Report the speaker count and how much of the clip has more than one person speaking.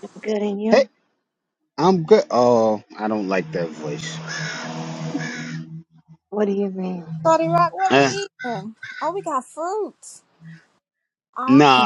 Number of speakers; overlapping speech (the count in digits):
3, about 6%